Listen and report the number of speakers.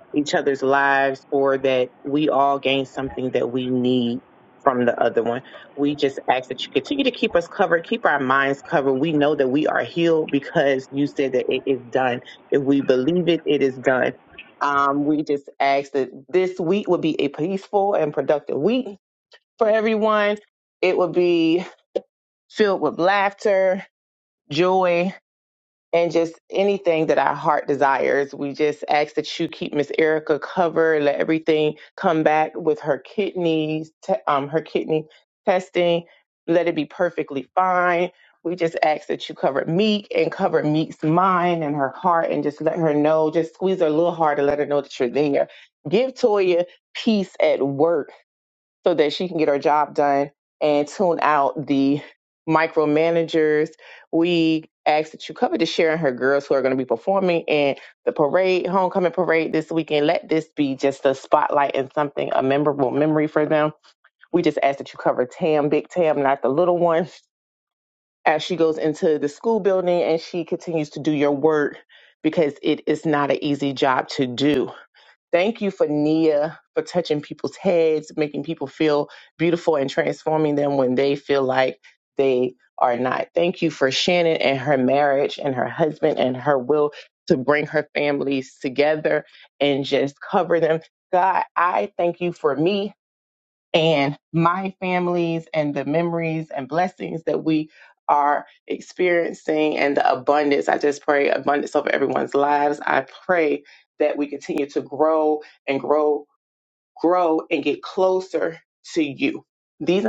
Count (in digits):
1